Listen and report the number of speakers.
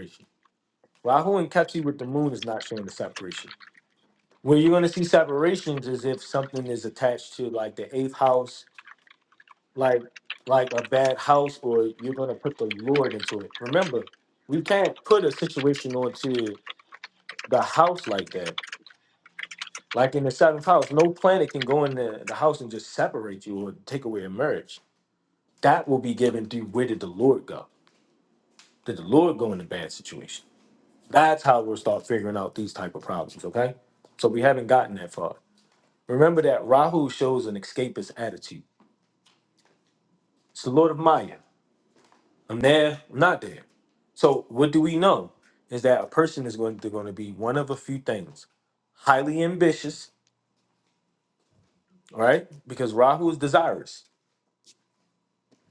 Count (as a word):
one